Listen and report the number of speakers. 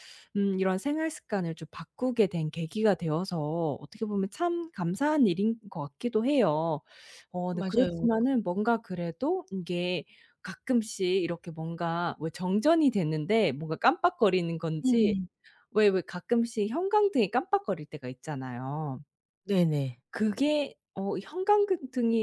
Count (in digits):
2